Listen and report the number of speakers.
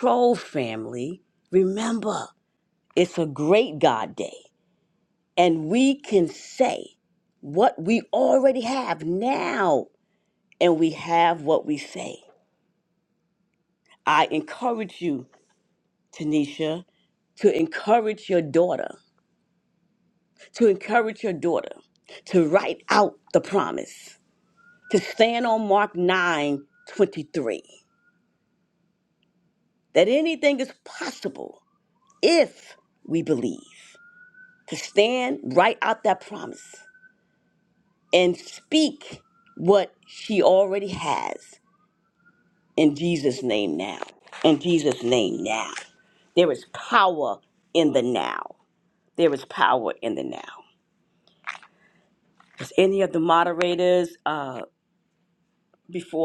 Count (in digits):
1